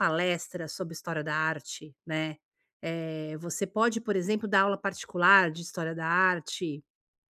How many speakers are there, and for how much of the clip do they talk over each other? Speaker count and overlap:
1, no overlap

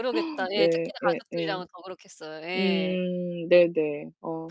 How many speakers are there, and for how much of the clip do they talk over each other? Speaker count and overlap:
2, about 33%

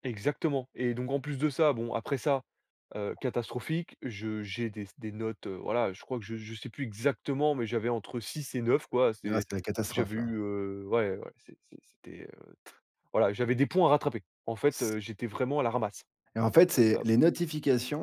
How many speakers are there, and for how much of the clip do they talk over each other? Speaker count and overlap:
2, about 4%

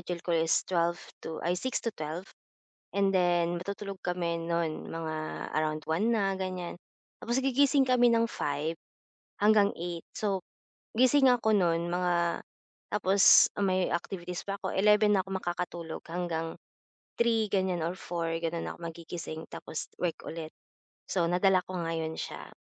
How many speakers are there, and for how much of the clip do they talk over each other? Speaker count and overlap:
1, no overlap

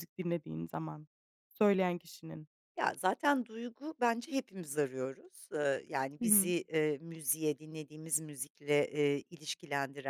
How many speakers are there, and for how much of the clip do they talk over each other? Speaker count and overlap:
2, about 3%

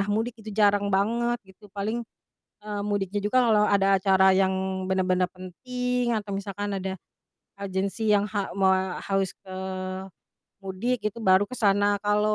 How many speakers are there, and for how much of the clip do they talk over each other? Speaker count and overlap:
1, no overlap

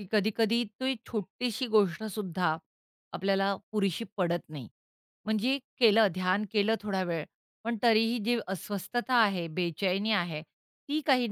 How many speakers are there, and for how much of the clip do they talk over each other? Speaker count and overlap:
1, no overlap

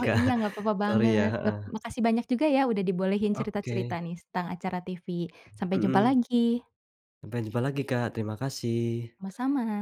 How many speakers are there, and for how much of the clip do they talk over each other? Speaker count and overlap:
2, about 21%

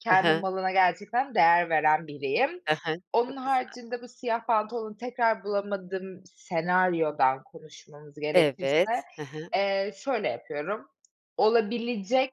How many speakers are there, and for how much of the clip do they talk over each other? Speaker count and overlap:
2, about 12%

